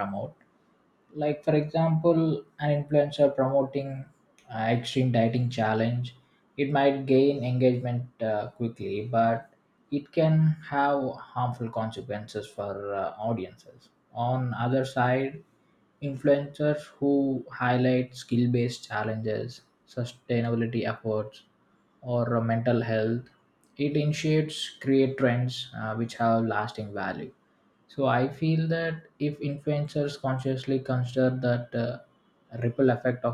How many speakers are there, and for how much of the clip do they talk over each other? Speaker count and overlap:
1, no overlap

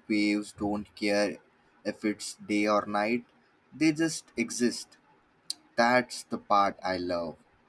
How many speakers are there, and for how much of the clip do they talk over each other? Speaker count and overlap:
1, no overlap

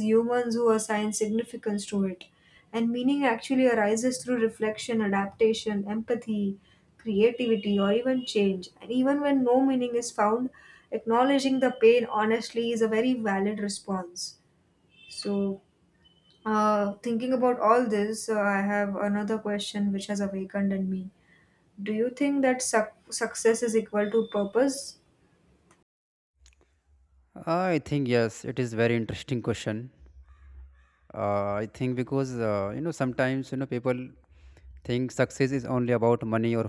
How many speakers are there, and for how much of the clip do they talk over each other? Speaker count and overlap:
2, no overlap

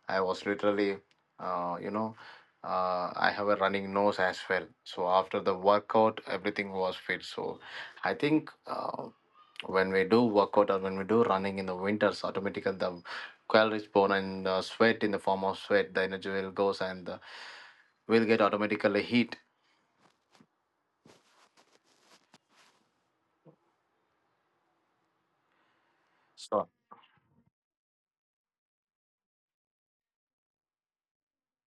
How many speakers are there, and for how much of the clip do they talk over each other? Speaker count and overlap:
1, no overlap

